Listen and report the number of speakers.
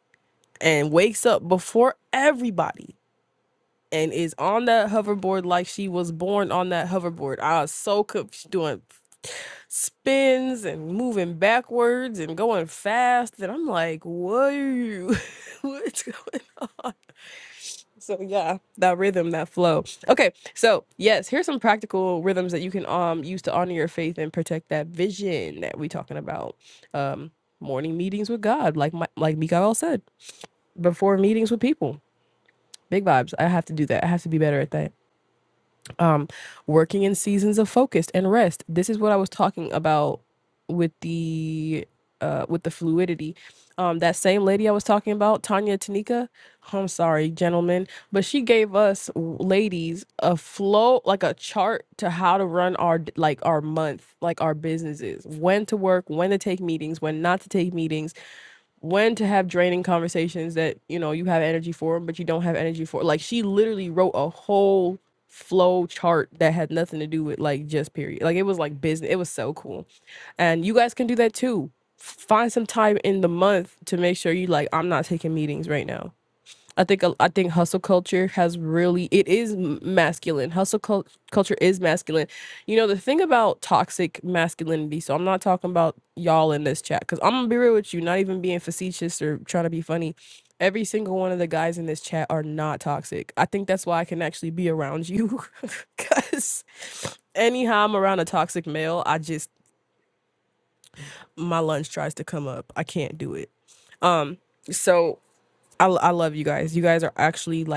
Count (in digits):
1